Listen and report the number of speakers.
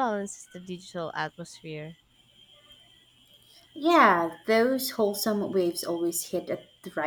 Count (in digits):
2